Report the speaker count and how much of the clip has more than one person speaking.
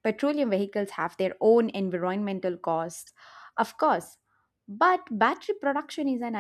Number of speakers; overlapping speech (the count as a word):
one, no overlap